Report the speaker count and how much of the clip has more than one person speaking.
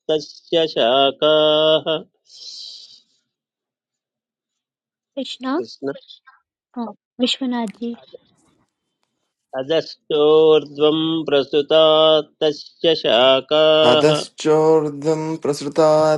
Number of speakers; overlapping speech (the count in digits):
3, about 2%